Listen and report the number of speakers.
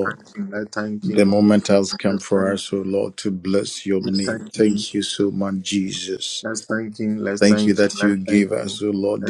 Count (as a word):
two